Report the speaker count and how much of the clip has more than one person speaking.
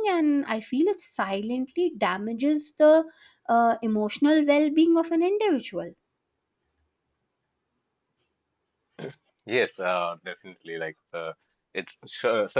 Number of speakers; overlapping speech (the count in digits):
2, no overlap